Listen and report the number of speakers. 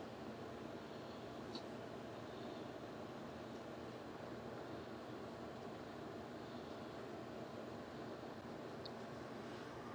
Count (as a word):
zero